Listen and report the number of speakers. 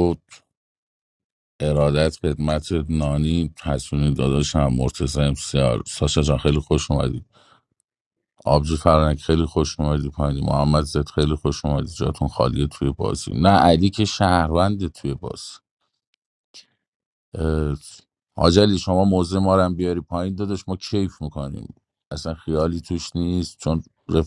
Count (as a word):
one